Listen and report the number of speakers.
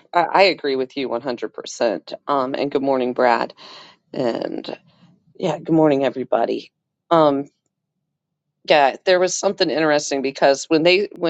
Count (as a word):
one